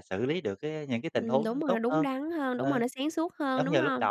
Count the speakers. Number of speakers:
2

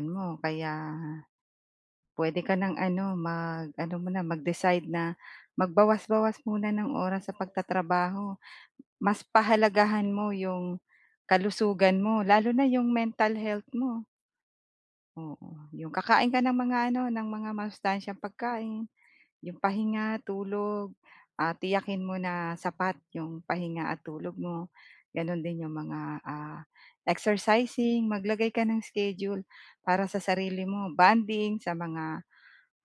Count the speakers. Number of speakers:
1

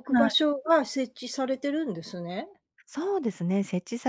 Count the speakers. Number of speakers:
2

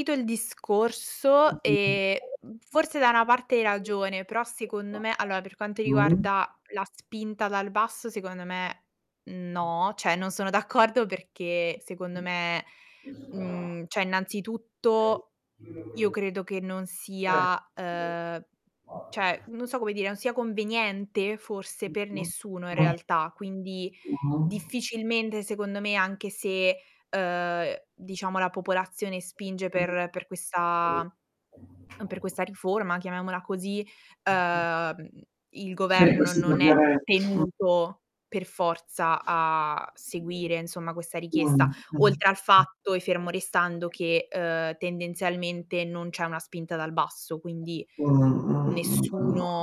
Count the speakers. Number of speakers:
2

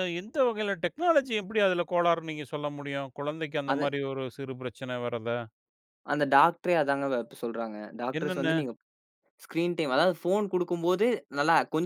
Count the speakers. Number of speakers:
2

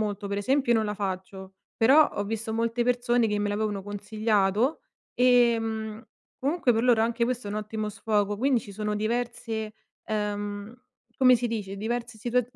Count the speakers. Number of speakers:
1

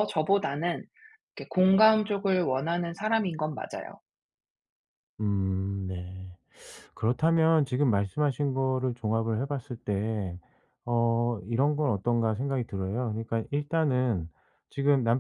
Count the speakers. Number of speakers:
2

